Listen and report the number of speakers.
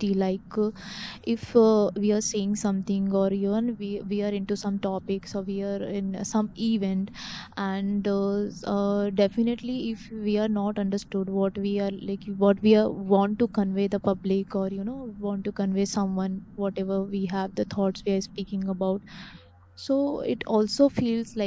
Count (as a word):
one